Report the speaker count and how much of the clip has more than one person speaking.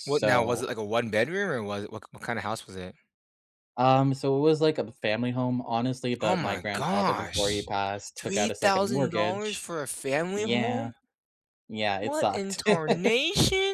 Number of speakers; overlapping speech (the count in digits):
2, about 33%